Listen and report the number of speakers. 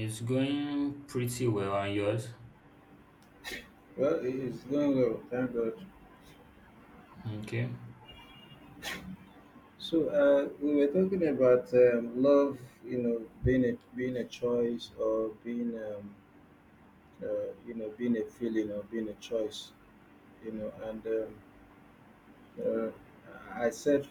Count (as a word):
two